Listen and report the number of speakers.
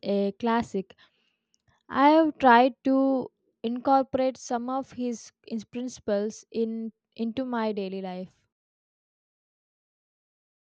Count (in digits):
1